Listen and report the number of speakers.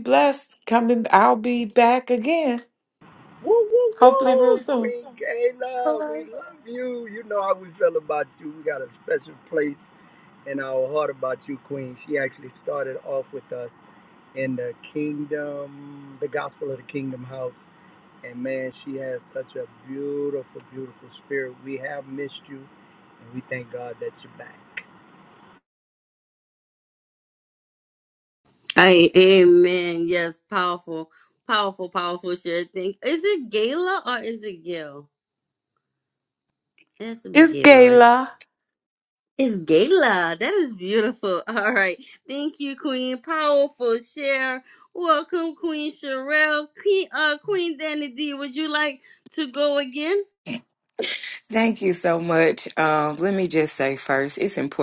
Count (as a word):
four